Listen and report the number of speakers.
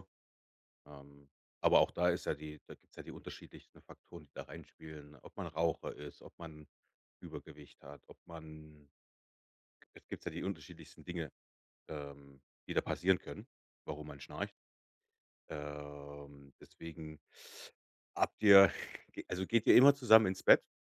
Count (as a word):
one